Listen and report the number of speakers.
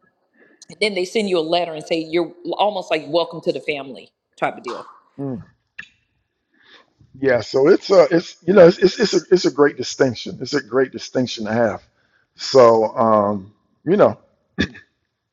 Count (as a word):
two